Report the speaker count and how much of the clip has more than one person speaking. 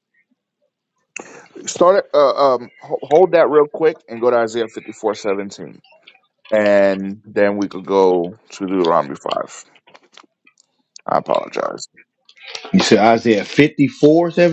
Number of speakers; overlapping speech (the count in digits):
2, no overlap